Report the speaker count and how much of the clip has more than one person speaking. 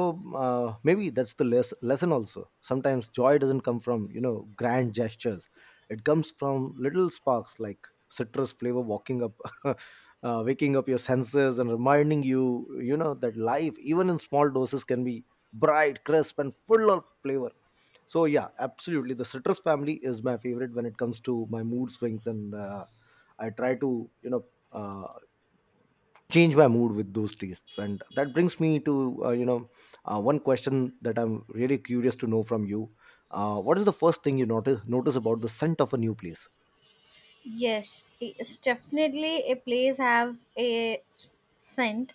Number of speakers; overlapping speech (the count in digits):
2, no overlap